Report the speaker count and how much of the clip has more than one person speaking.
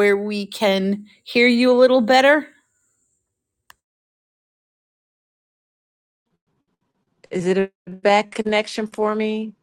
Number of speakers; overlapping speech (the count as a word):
two, no overlap